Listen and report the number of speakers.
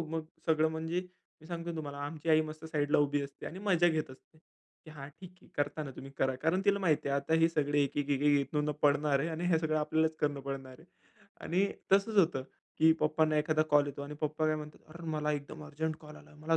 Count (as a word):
one